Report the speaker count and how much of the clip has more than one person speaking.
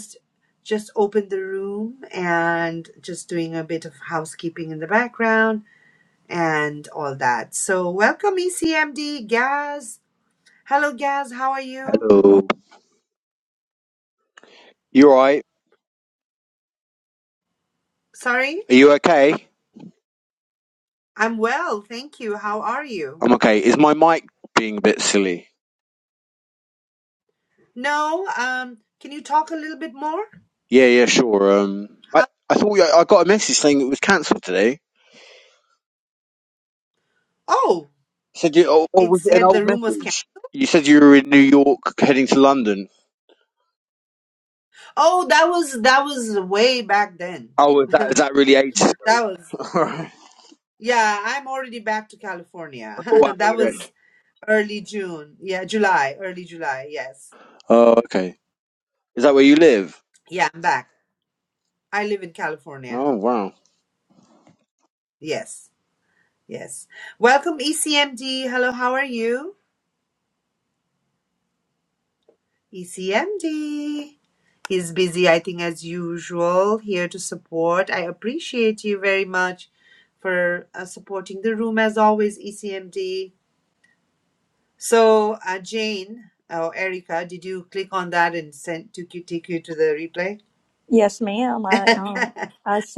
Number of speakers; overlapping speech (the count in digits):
3, about 3%